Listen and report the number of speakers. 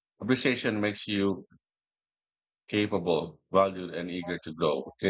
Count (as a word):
one